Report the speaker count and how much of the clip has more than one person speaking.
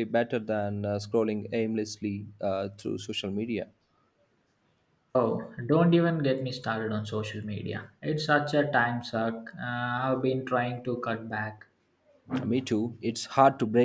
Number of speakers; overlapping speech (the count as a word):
two, no overlap